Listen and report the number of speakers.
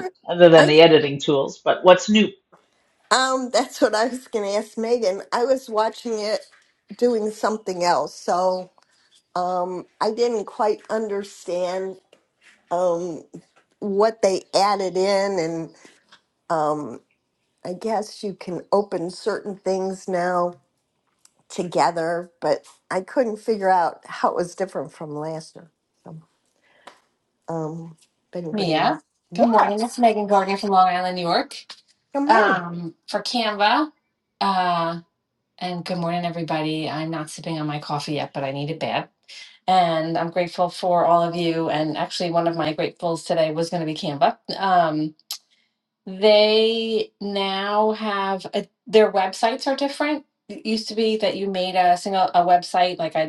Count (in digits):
3